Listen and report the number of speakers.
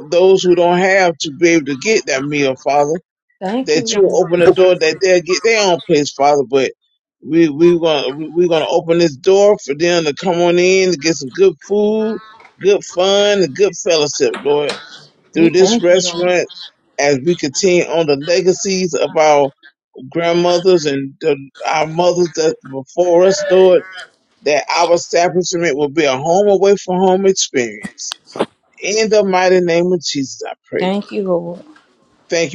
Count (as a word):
two